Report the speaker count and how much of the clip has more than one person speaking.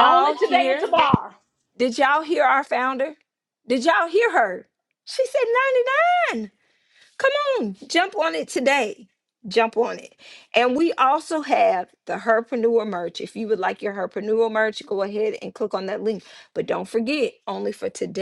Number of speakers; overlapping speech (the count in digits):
2, about 5%